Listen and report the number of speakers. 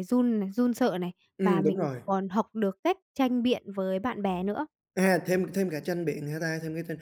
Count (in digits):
2